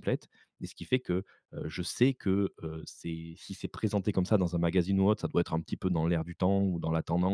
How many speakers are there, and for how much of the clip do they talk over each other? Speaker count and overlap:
1, no overlap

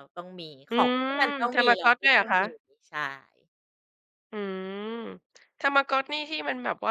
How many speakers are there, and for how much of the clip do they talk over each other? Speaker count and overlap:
2, about 26%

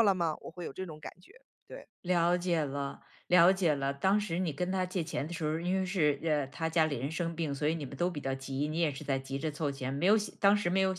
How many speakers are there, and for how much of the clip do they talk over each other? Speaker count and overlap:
2, no overlap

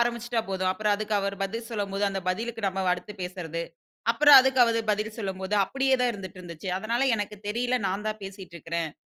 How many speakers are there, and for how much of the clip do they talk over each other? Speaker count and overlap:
1, no overlap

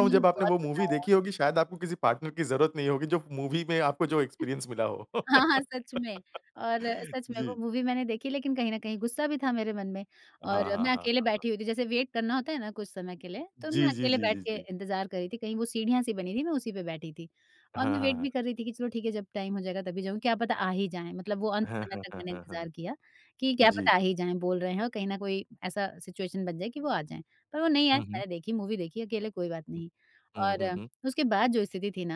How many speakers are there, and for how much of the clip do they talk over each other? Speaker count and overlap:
2, about 18%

